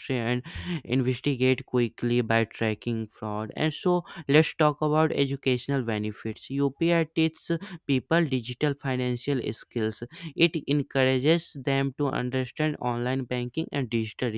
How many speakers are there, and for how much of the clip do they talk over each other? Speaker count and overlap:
1, no overlap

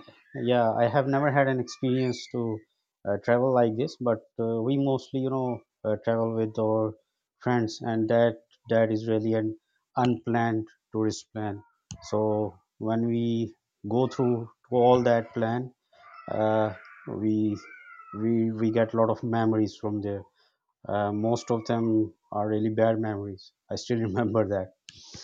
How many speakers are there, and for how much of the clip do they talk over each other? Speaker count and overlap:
1, no overlap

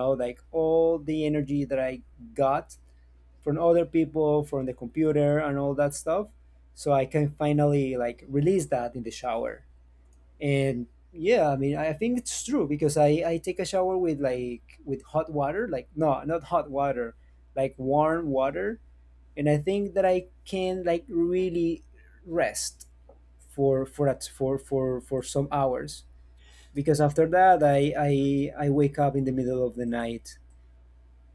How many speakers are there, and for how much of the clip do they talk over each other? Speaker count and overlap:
1, no overlap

